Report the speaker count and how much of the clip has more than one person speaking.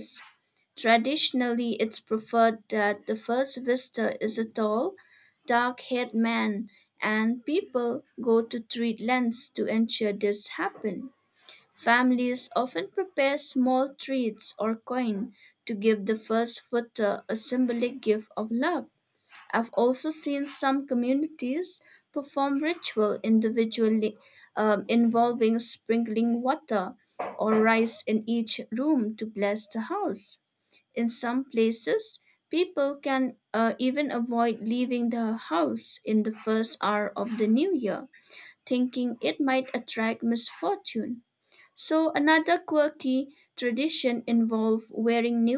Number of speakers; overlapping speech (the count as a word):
one, no overlap